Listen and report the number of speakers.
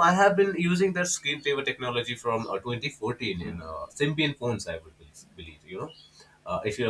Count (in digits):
1